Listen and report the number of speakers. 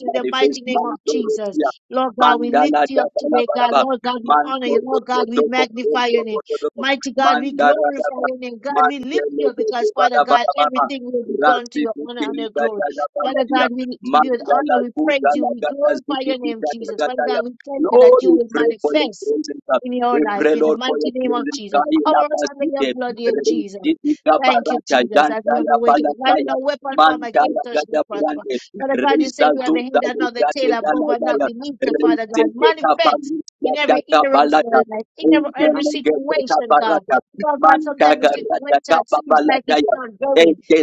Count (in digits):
2